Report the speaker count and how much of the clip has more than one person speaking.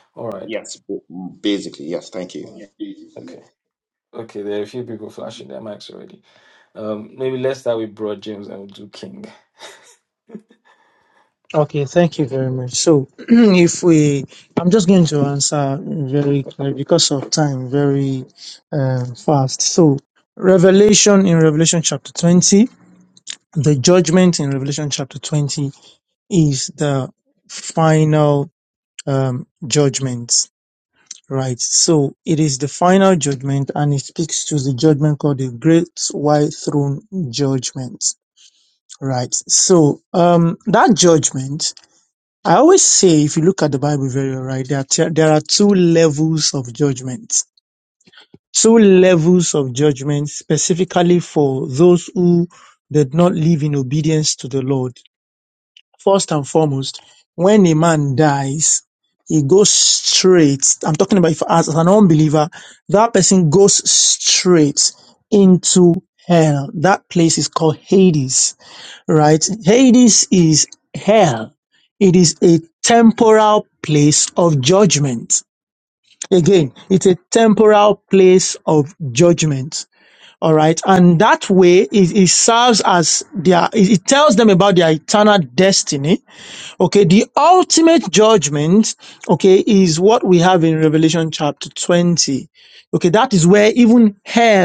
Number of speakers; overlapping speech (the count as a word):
three, under 1%